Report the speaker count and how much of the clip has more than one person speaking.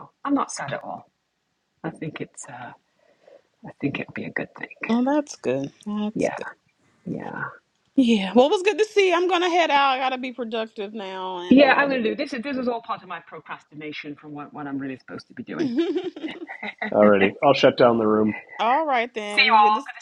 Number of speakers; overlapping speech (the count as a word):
three, about 6%